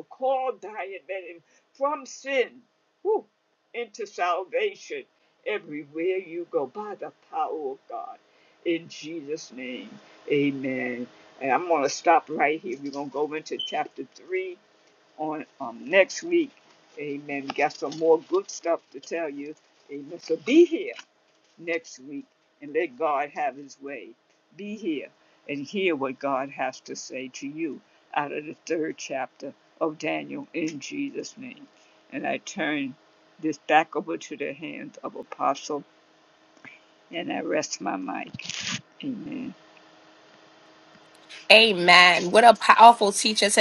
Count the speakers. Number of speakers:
two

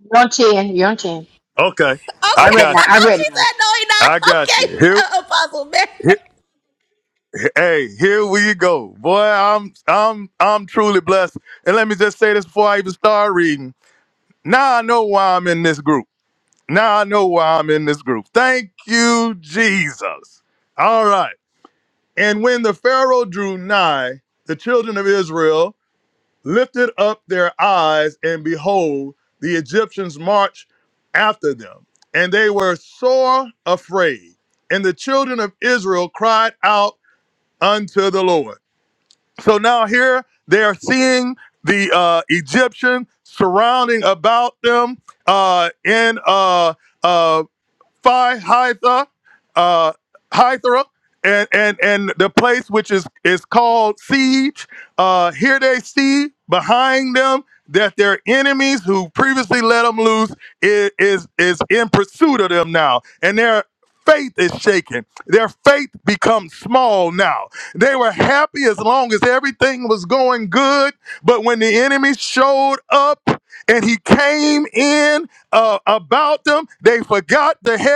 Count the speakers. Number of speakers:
three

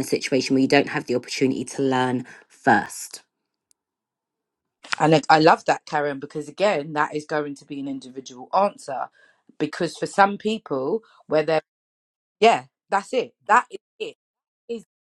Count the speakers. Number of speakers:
two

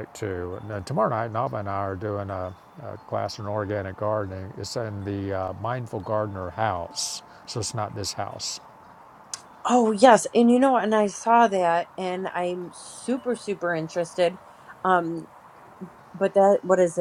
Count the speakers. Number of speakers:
two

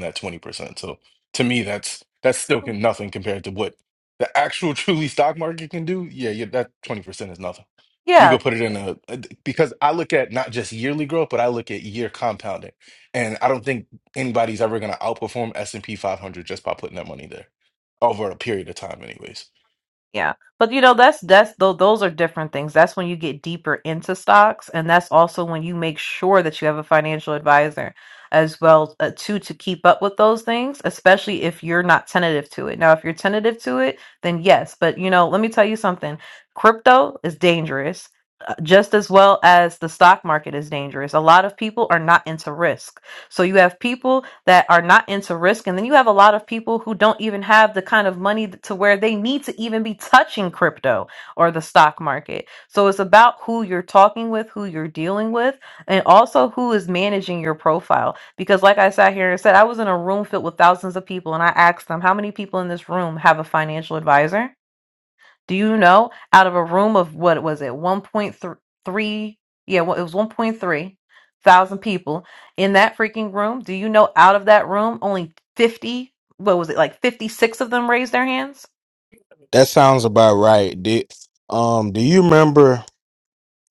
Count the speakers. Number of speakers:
three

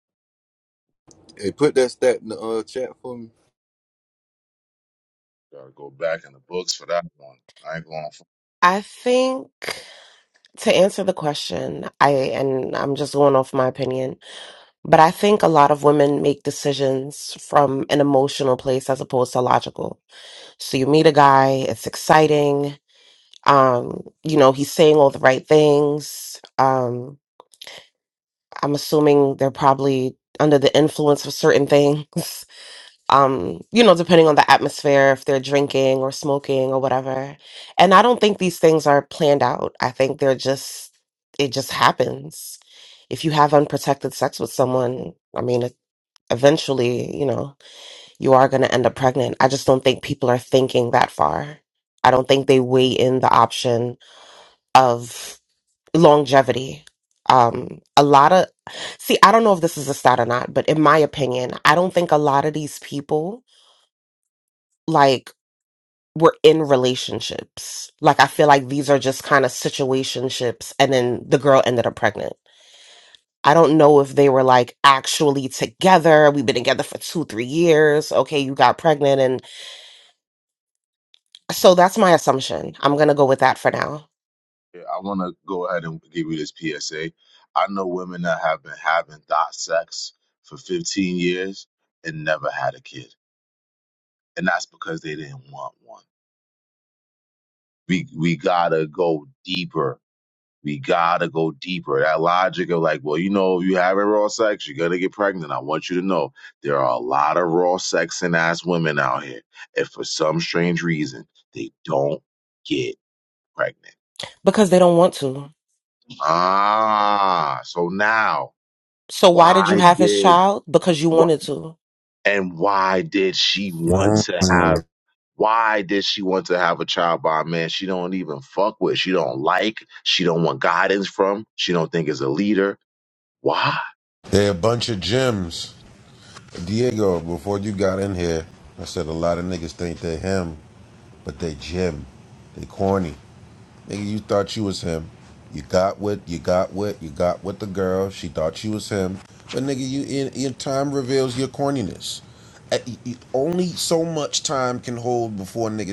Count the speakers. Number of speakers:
four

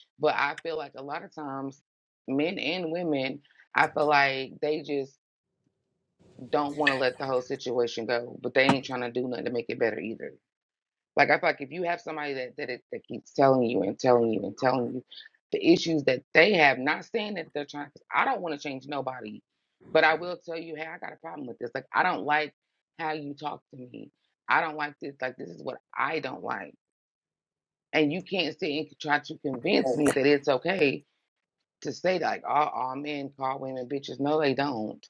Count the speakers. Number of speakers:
one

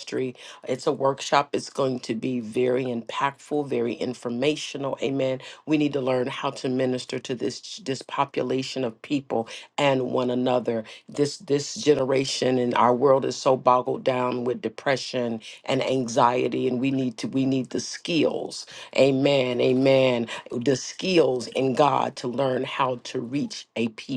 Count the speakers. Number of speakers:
one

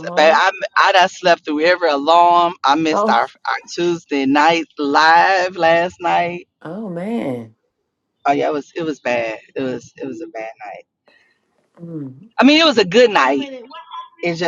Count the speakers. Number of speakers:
three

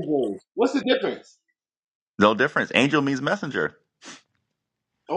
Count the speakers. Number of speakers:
two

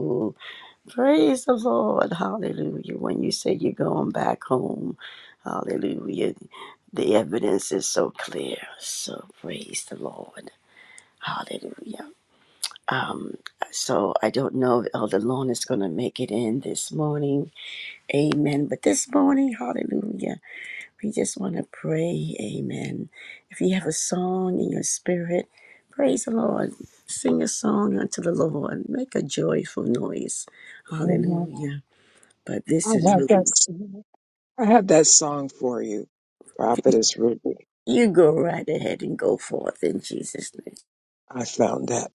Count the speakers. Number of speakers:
two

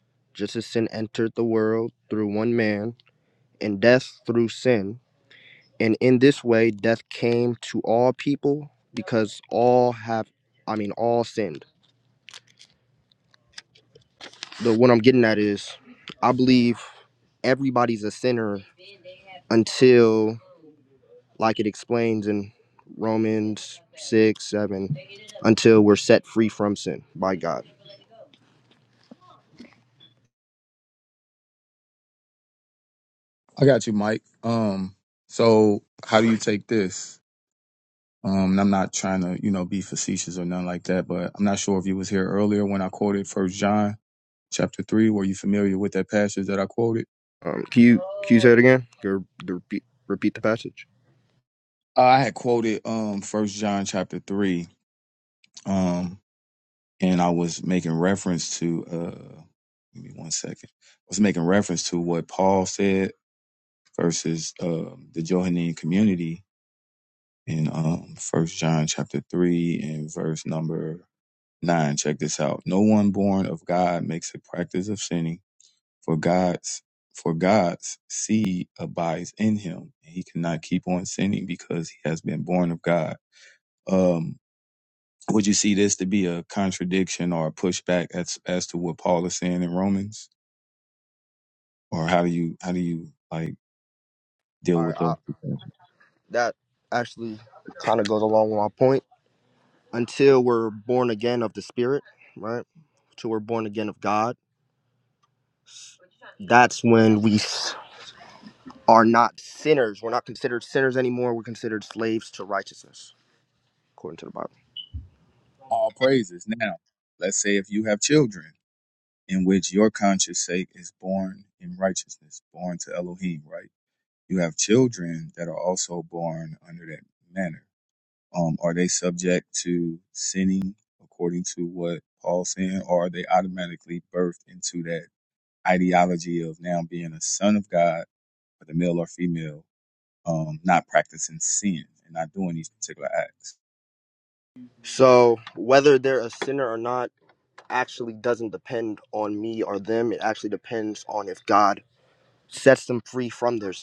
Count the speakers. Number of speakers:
two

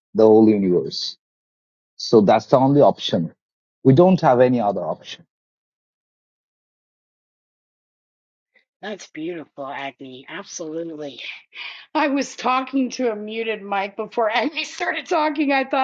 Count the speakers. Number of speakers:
two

